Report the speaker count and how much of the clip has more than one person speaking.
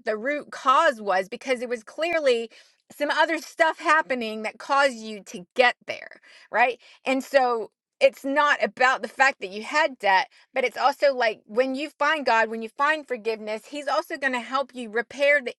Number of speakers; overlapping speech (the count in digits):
1, no overlap